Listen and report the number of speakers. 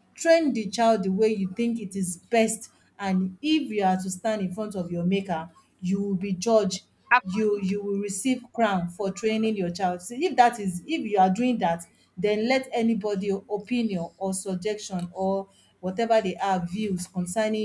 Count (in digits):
1